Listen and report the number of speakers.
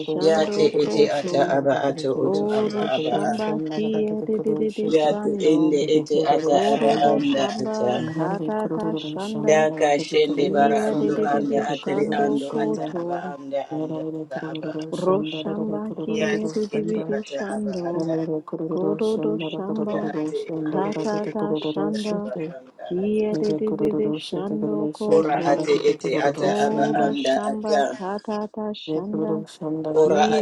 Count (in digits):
3